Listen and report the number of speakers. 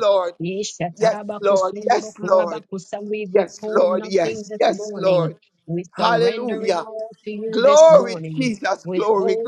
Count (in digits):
2